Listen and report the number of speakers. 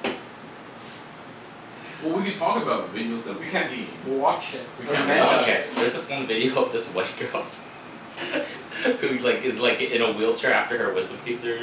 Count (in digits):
3